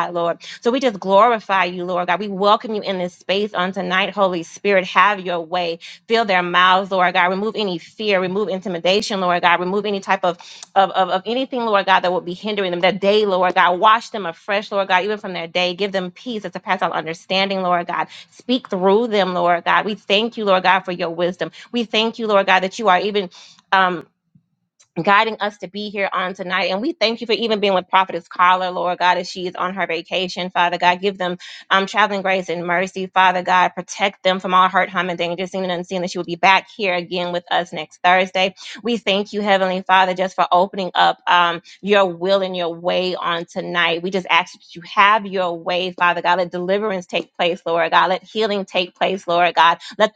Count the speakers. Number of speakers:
one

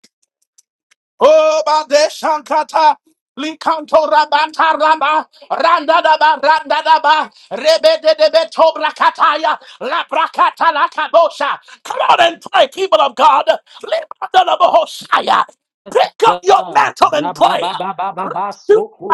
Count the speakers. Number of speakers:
two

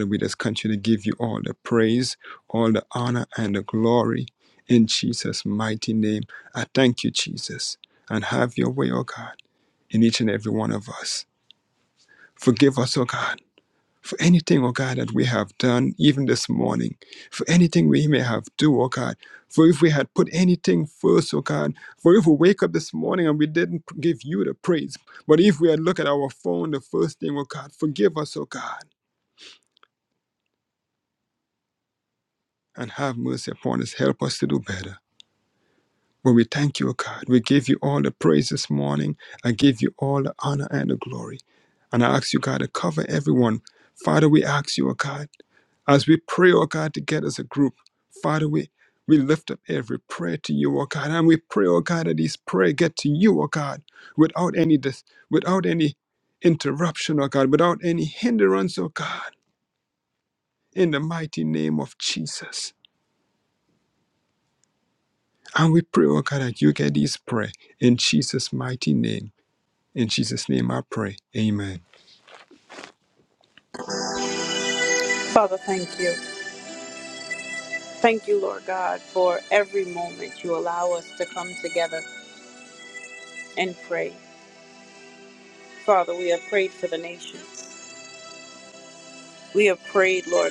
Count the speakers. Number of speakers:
two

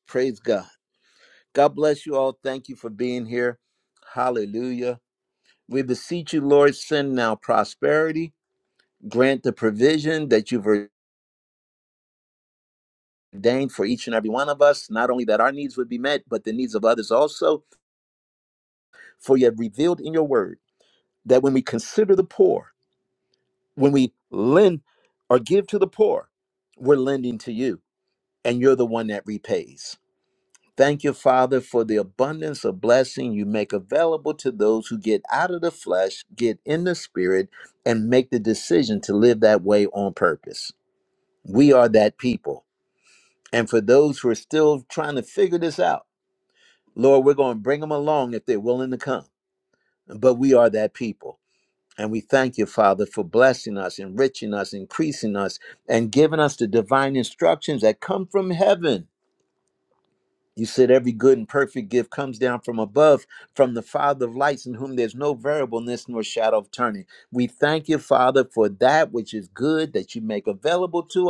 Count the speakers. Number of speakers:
one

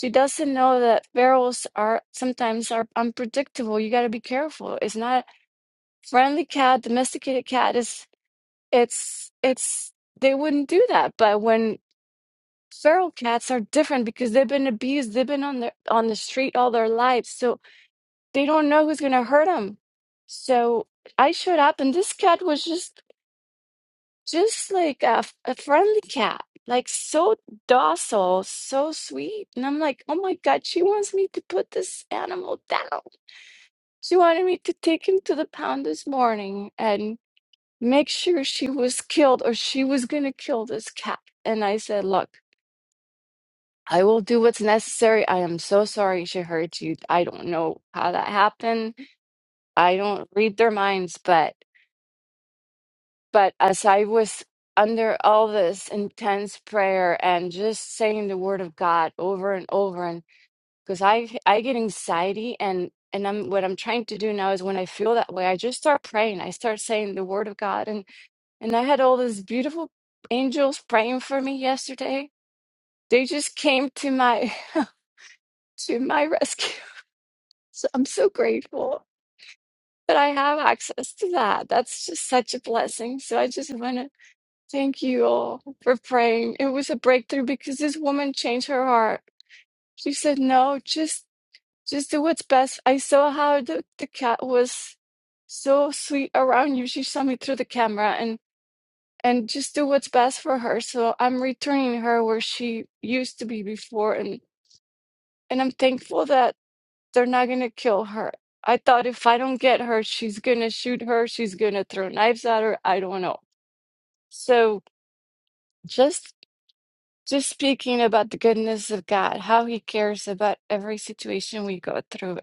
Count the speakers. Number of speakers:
one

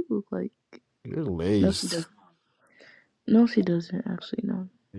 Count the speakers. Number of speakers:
two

